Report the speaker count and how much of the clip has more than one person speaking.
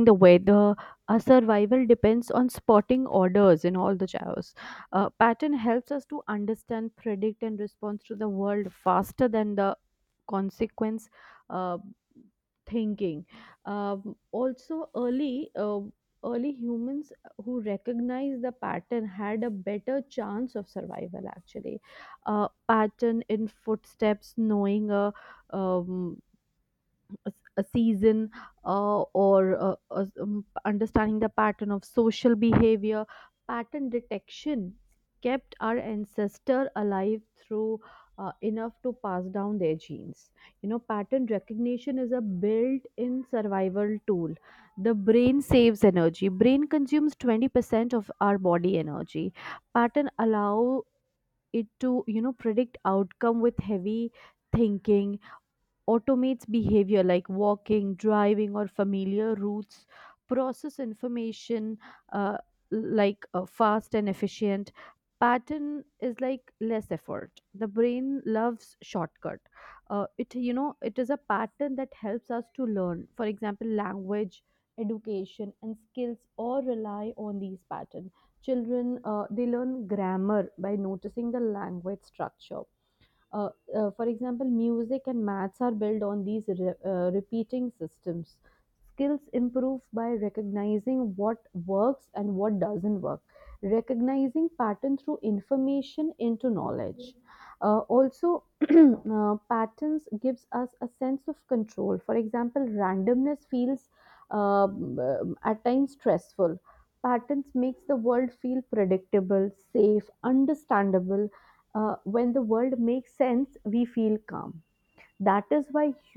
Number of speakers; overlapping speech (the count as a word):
one, no overlap